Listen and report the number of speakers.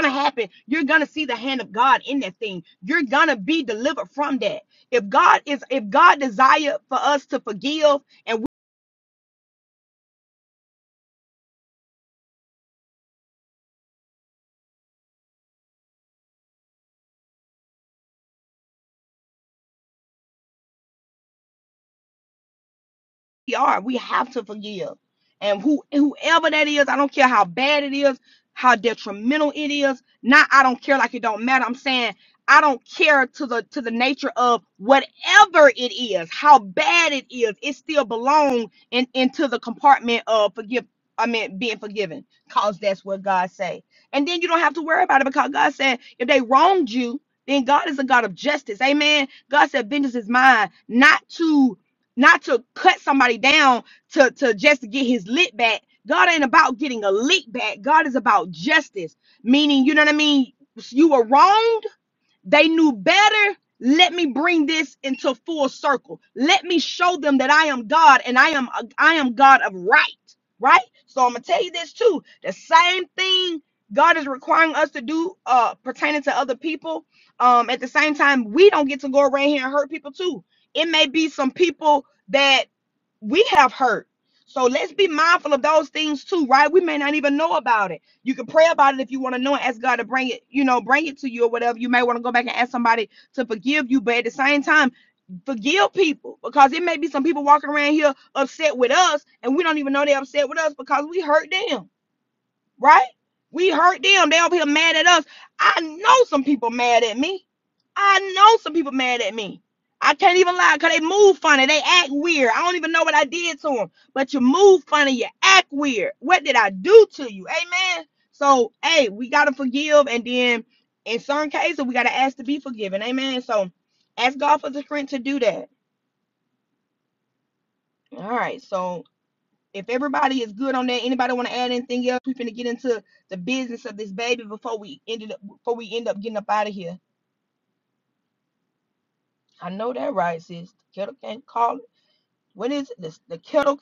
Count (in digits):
1